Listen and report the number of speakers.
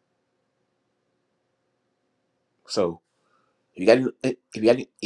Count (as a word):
one